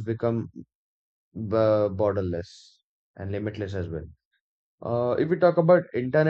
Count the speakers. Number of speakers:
1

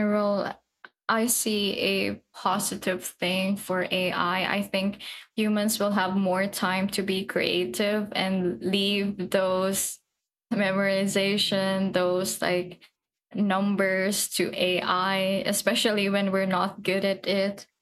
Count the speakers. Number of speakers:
1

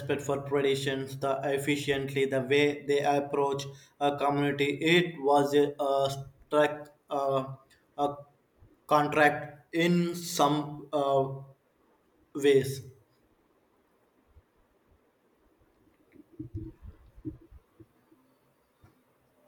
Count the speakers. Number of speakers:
1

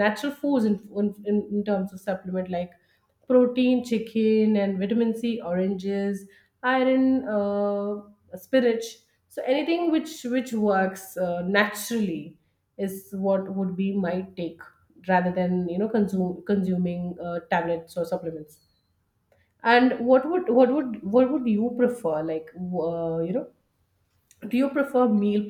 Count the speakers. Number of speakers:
1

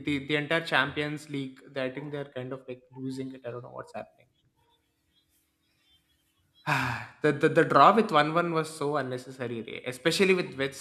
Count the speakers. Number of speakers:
1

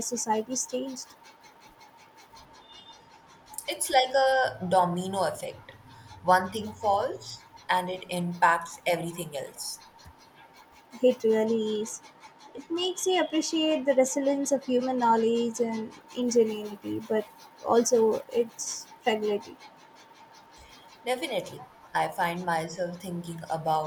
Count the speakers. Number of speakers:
2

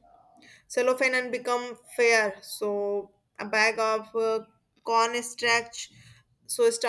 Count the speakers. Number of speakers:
1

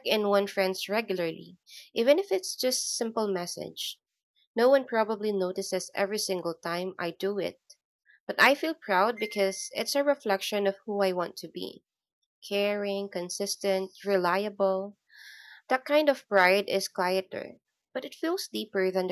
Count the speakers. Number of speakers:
1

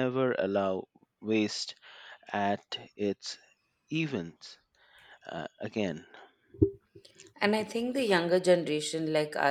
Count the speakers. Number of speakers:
2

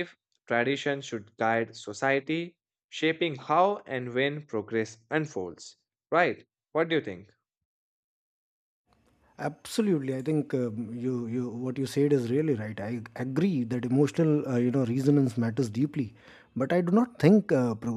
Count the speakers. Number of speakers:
2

